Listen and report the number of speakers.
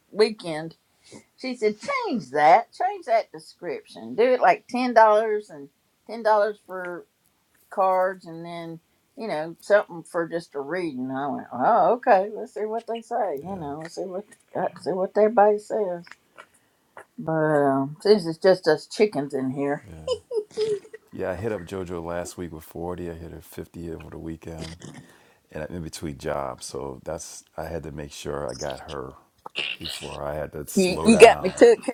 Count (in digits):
2